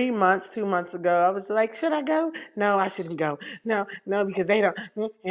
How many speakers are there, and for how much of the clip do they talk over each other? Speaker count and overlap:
1, no overlap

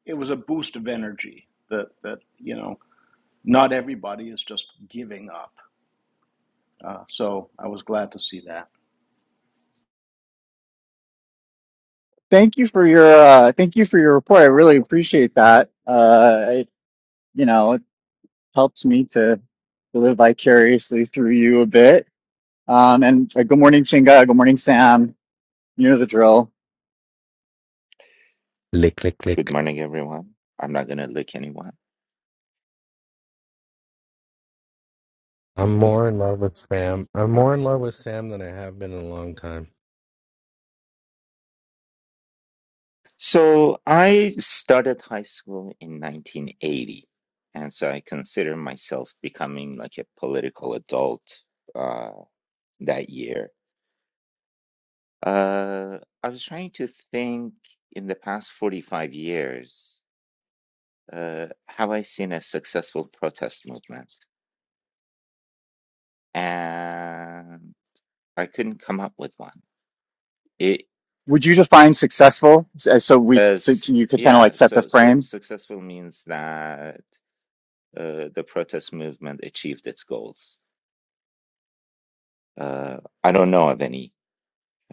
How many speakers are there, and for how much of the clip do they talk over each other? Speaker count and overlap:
4, about 2%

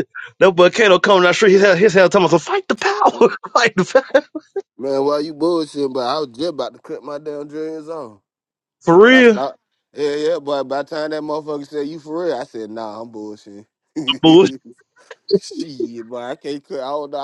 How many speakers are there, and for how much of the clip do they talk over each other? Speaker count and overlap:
2, about 2%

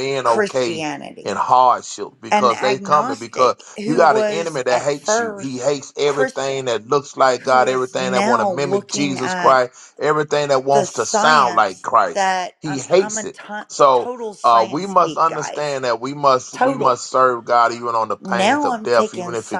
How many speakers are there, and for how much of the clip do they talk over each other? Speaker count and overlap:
2, about 56%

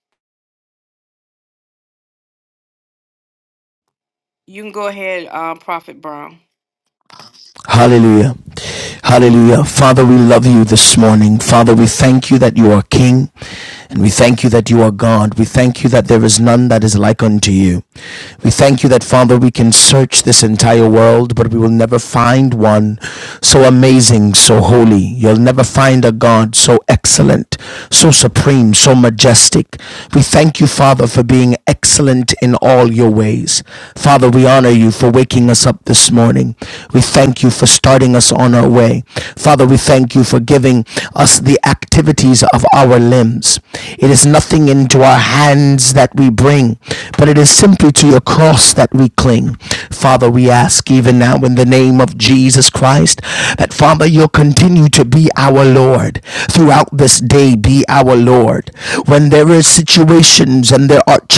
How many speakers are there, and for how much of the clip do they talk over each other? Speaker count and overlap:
2, no overlap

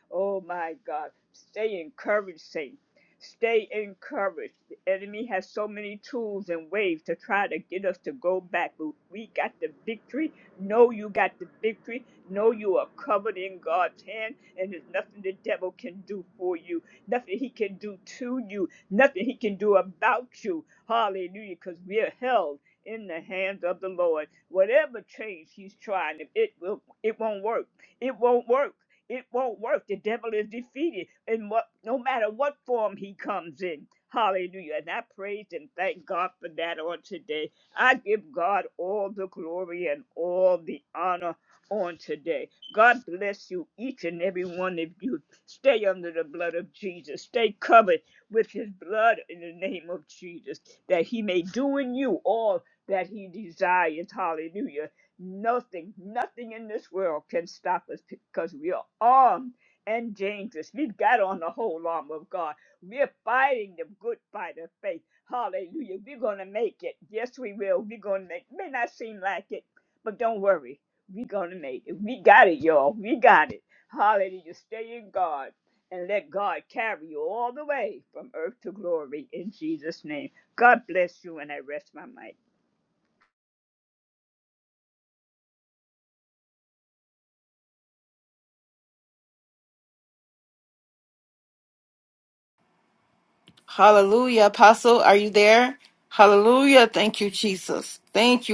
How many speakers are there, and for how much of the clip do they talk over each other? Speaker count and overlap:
2, no overlap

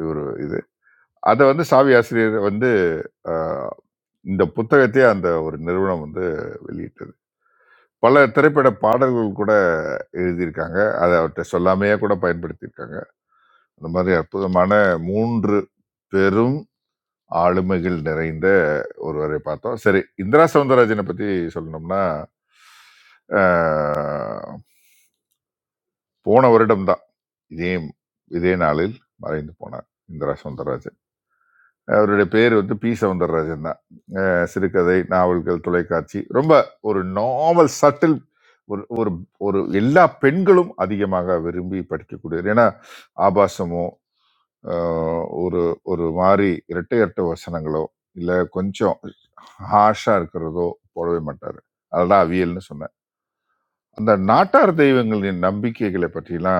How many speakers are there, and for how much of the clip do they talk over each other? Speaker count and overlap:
1, no overlap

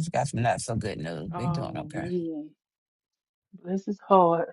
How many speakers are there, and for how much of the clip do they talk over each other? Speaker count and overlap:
2, about 18%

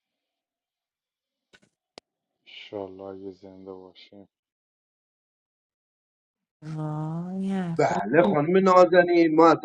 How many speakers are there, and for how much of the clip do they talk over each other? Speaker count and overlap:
3, about 2%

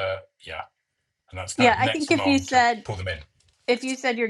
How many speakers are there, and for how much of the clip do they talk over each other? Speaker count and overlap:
2, about 29%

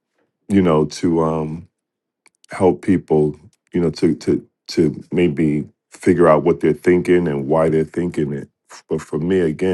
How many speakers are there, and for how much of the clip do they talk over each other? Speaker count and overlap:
1, no overlap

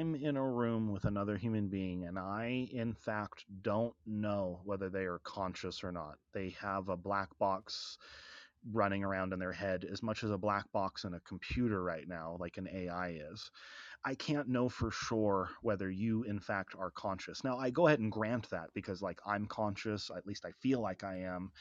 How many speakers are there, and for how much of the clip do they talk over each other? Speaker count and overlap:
1, no overlap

